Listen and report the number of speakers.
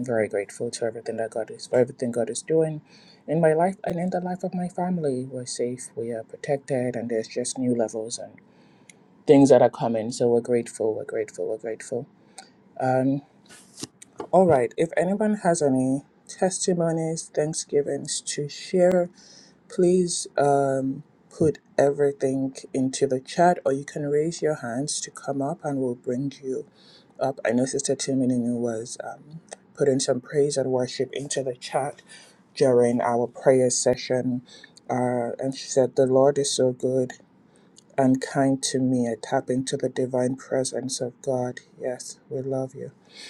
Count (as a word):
one